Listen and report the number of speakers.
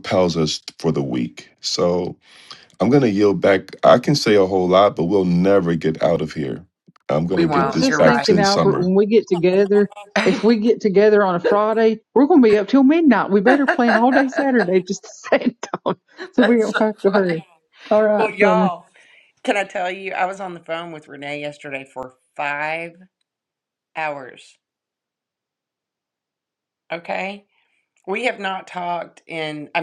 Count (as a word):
three